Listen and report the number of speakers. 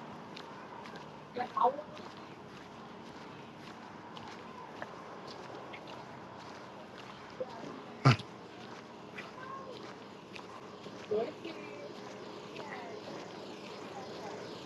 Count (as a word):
zero